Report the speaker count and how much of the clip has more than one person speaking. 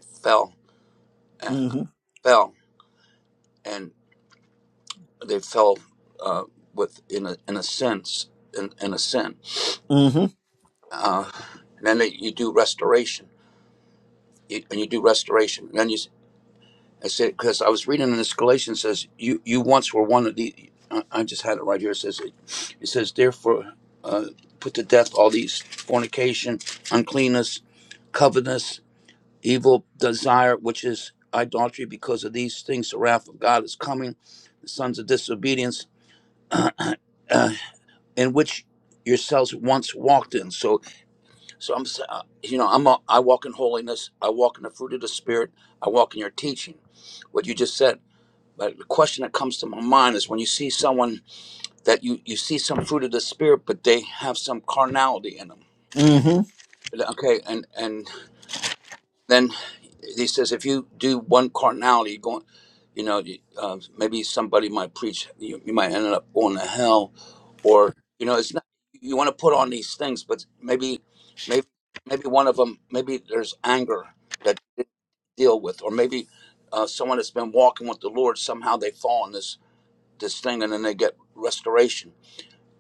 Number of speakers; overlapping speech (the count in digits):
2, under 1%